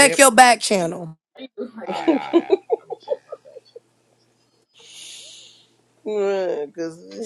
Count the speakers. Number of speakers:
three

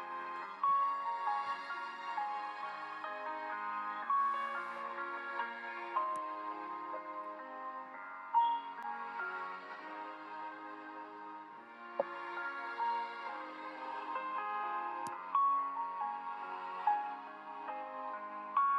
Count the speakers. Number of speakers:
zero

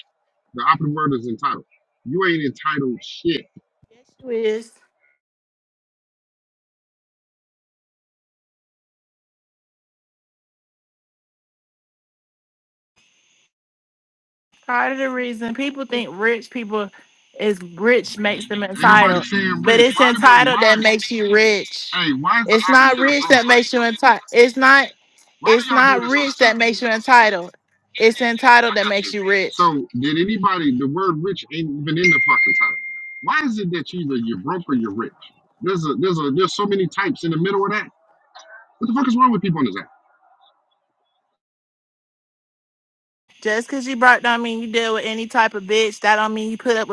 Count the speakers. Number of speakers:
two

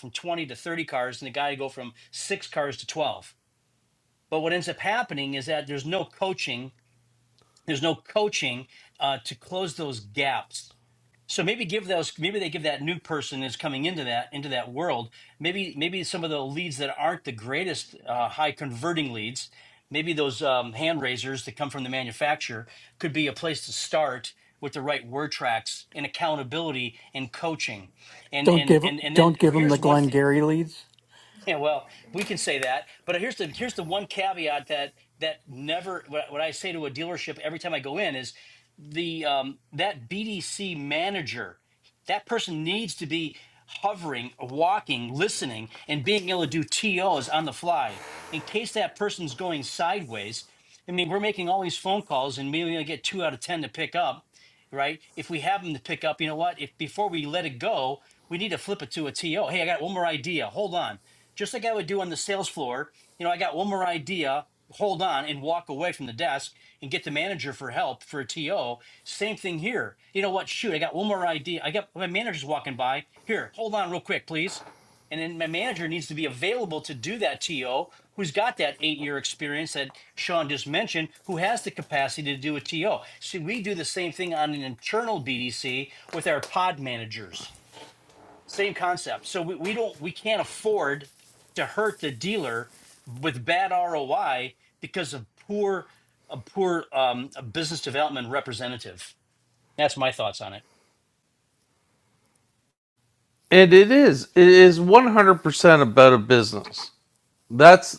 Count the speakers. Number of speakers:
three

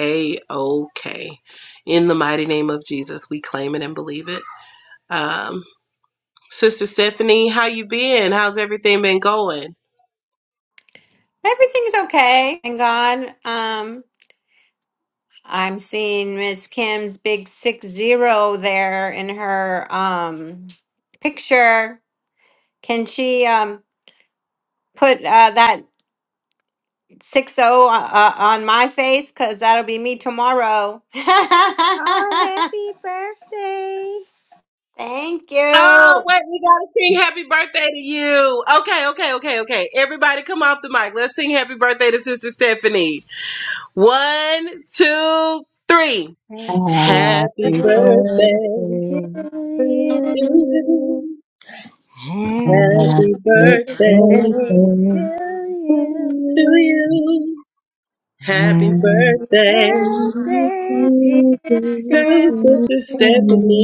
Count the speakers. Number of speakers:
four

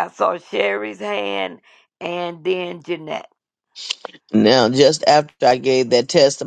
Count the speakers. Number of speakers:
two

